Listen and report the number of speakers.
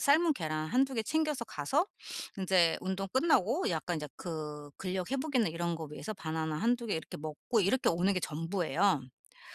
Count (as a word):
one